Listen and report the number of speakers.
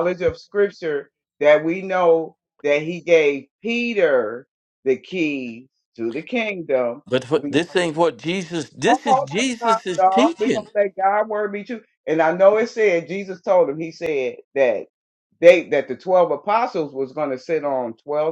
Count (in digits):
2